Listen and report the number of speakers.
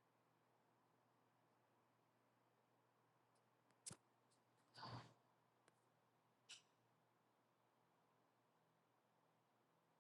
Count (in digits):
0